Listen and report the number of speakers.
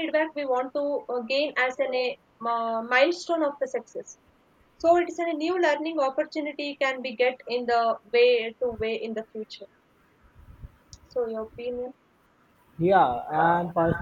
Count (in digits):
2